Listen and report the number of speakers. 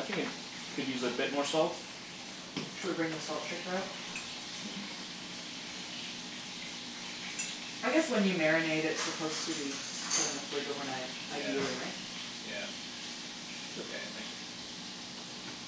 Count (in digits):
2